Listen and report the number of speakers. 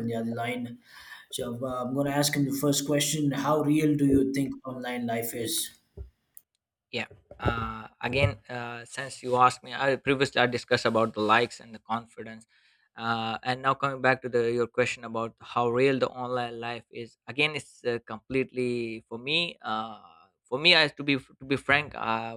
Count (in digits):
2